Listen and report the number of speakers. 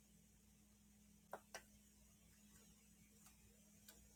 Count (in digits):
0